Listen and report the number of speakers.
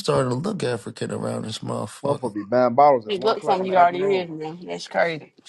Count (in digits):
3